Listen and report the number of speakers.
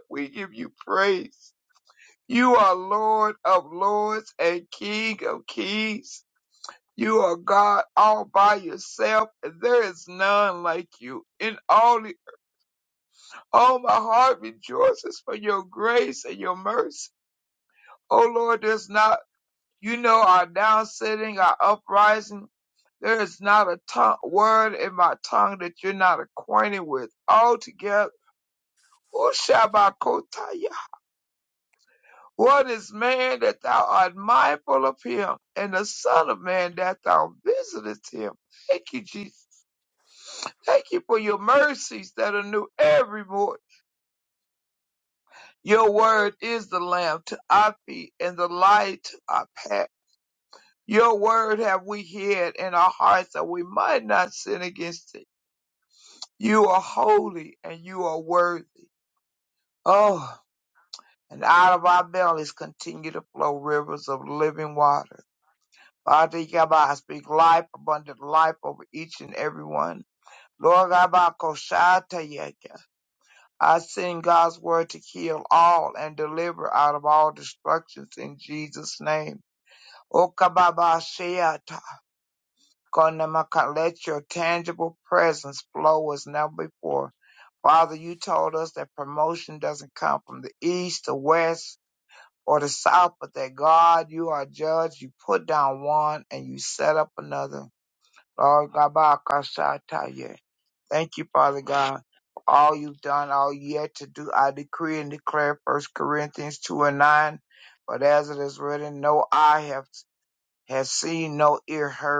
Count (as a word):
one